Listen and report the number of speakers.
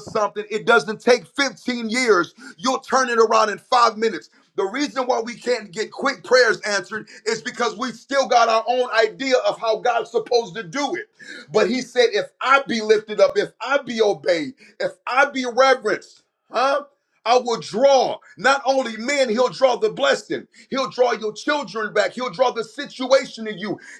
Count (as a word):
one